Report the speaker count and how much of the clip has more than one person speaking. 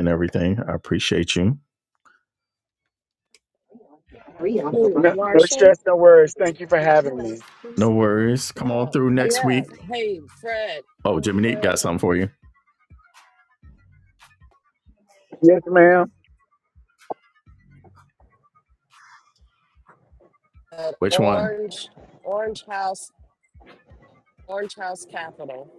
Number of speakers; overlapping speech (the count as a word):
three, about 8%